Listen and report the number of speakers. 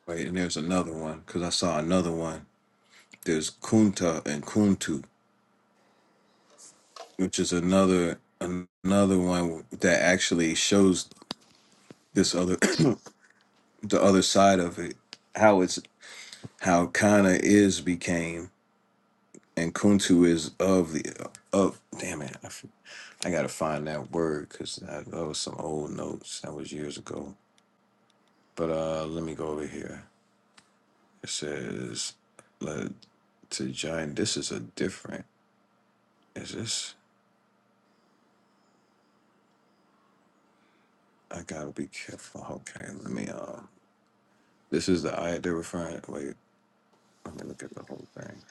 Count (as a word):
one